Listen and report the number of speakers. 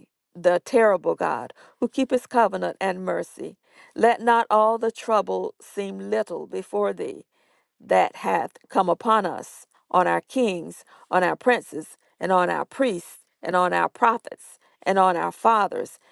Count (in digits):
1